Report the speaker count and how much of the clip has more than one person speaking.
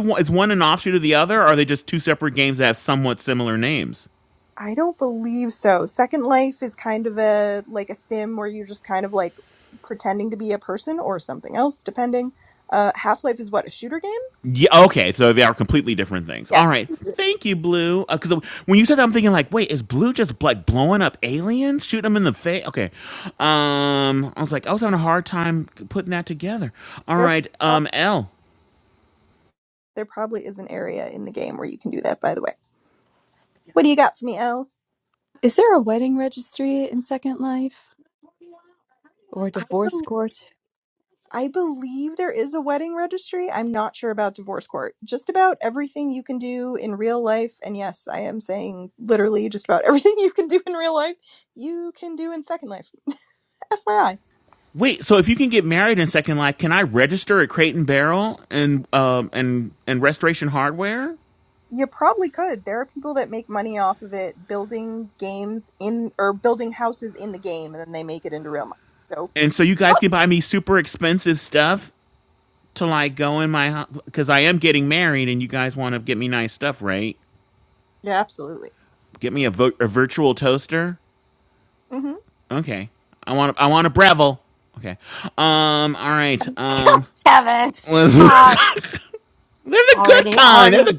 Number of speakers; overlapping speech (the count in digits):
4, about 2%